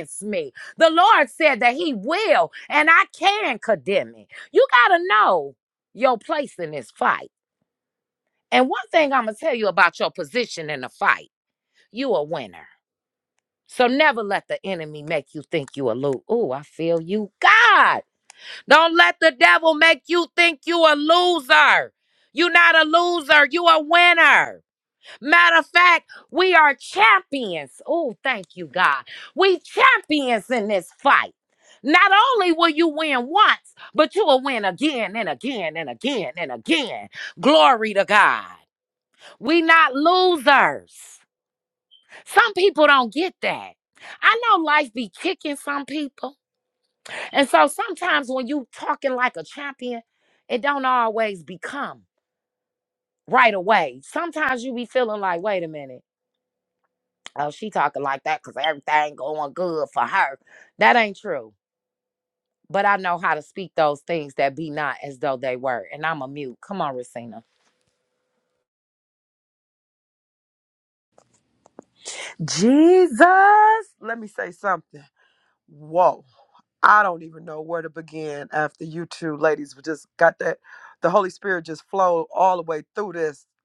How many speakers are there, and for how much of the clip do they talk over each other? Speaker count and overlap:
2, no overlap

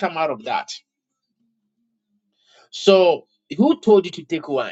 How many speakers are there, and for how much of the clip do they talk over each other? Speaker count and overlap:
1, no overlap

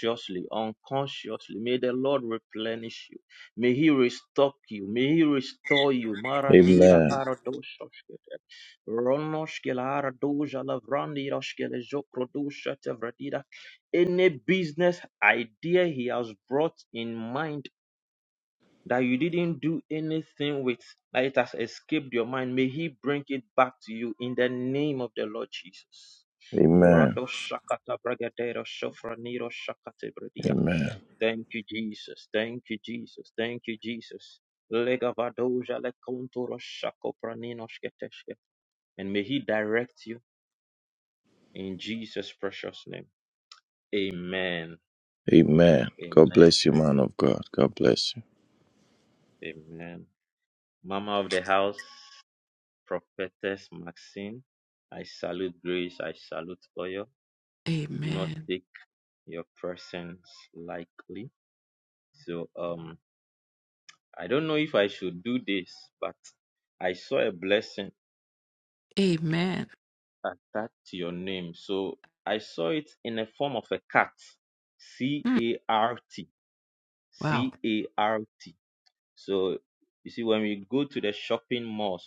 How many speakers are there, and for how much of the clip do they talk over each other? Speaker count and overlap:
3, about 3%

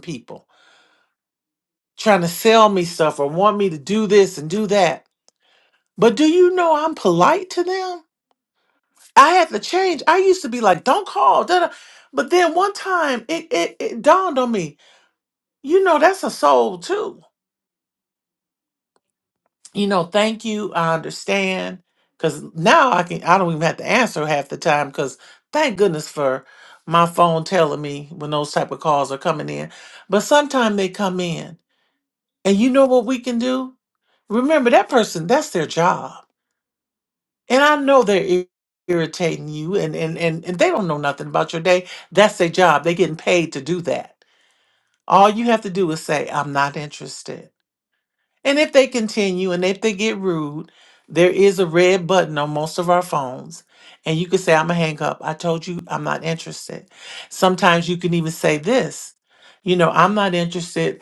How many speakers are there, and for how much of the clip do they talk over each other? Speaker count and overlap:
1, no overlap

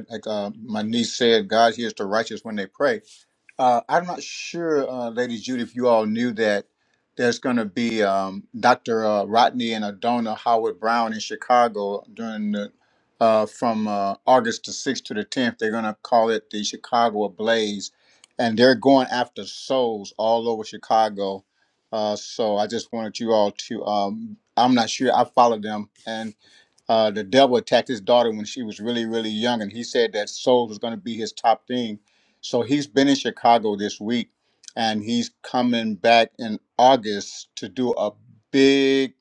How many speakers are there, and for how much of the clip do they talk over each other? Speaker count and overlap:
1, no overlap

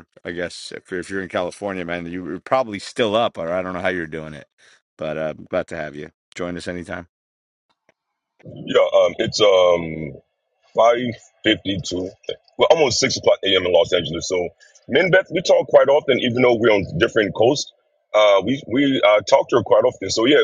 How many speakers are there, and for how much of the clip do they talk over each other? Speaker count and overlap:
2, no overlap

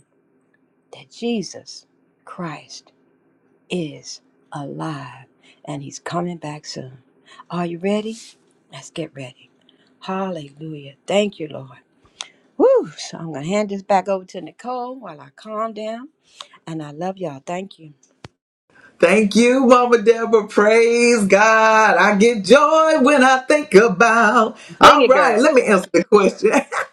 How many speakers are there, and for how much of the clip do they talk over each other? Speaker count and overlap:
2, about 3%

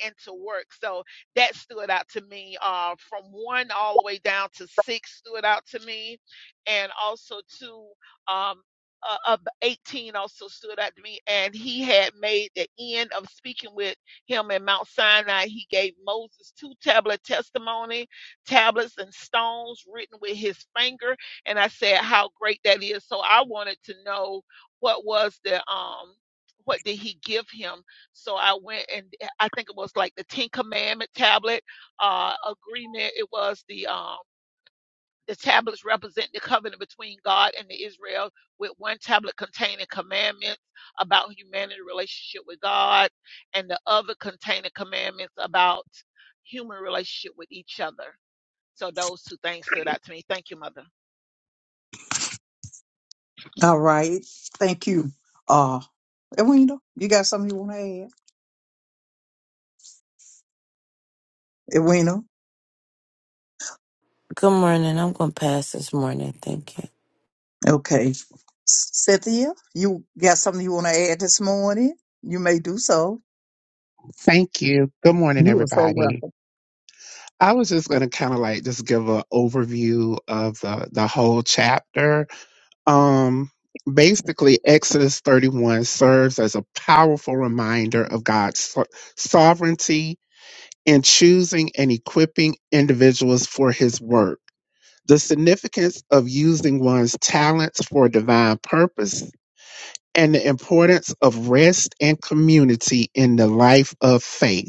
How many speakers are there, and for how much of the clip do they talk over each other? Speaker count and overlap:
4, about 1%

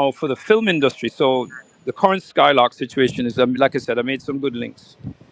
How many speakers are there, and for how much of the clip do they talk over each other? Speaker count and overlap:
1, no overlap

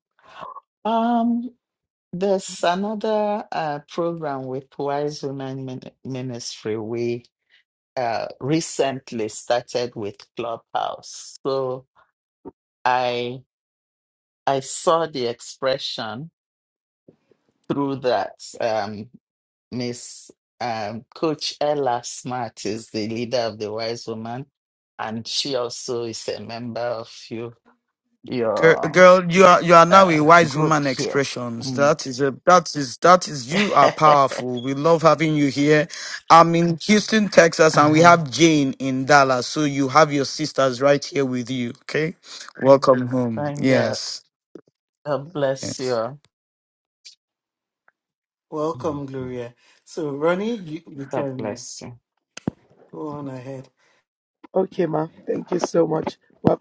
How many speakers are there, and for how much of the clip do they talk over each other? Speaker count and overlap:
4, about 7%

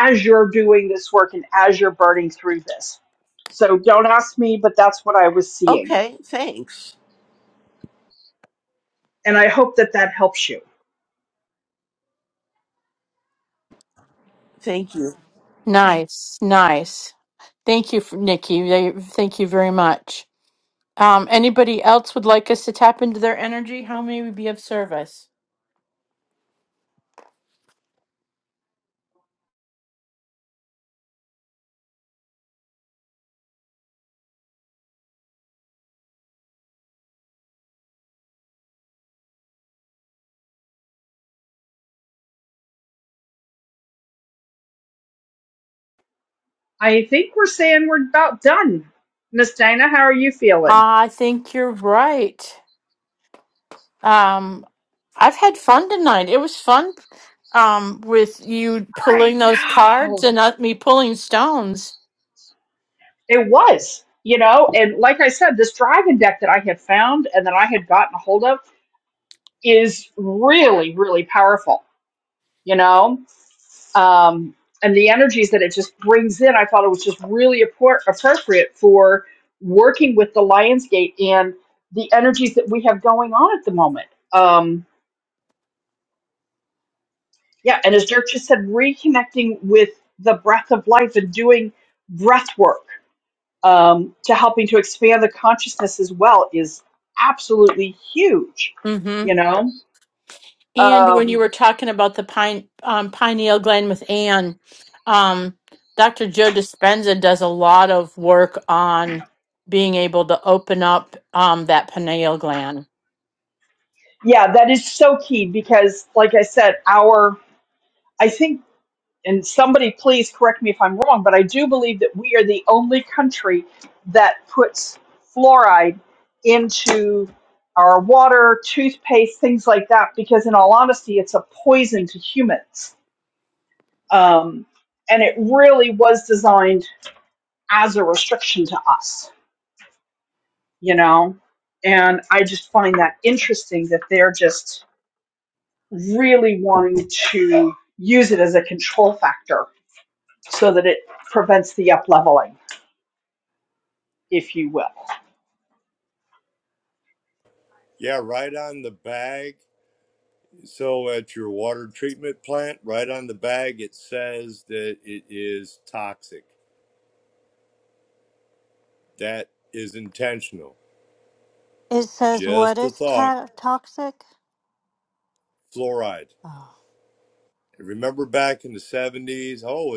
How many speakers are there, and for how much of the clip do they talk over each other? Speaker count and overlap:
5, about 1%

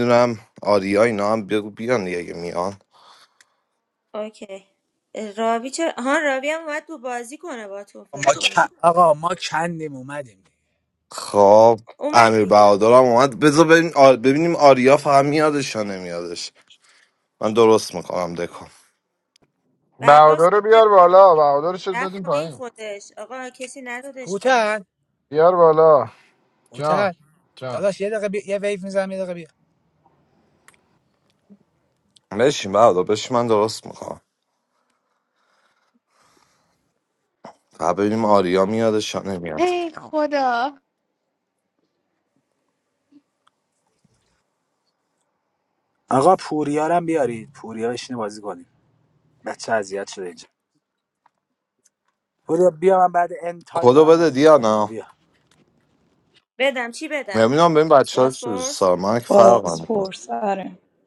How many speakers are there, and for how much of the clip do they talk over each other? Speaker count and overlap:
6, about 10%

